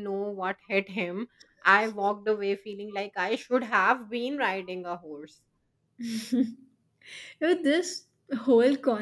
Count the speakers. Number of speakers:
two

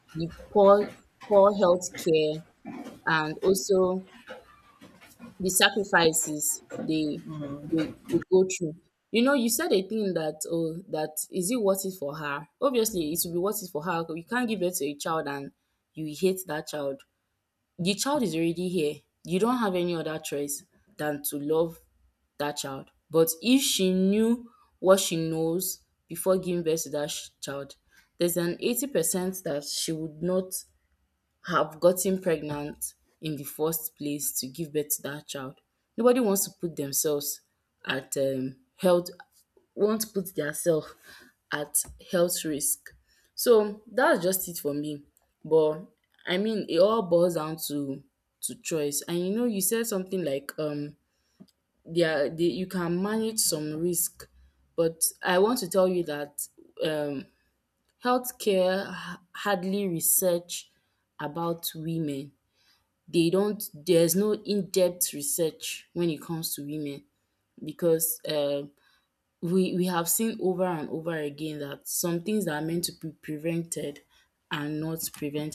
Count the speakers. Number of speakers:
one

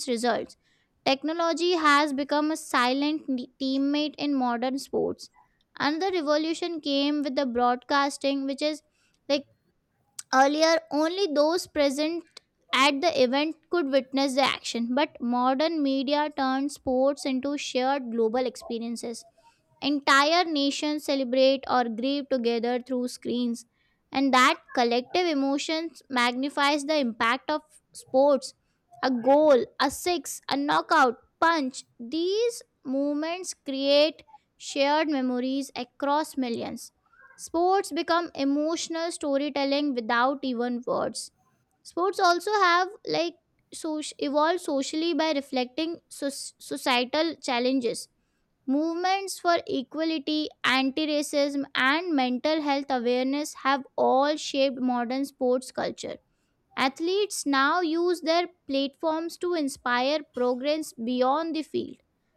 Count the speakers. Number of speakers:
one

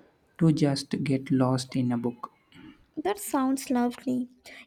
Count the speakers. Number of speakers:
two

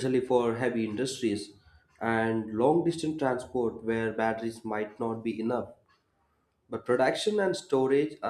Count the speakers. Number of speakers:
one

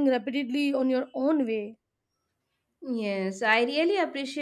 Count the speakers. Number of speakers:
two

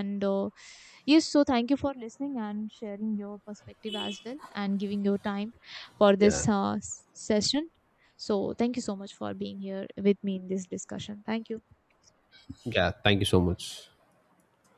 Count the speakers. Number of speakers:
two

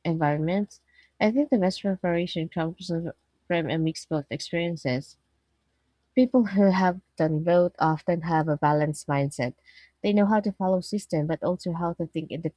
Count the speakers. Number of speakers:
one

